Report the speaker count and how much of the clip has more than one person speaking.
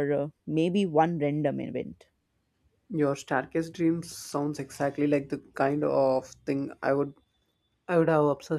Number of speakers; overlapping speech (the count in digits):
2, no overlap